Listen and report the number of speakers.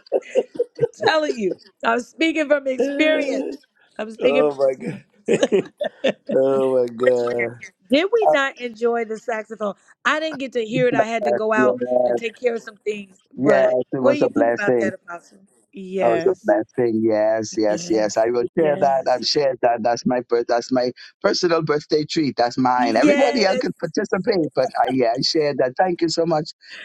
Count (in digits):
3